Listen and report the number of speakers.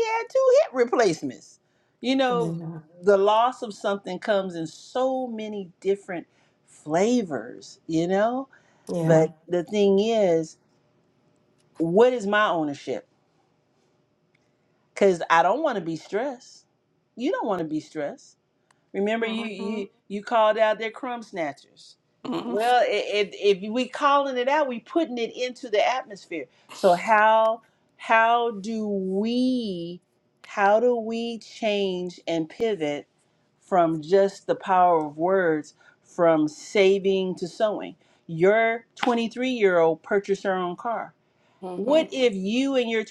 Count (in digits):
2